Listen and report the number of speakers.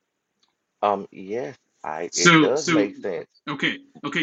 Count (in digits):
2